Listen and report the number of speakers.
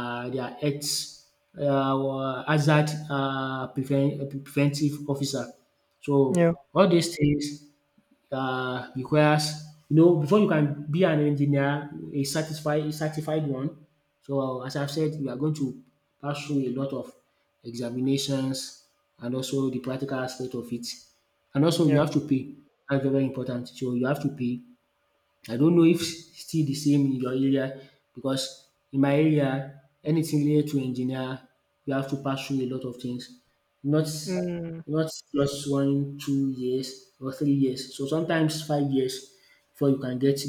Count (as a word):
two